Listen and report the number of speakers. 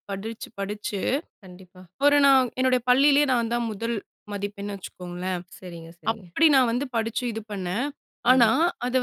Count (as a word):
two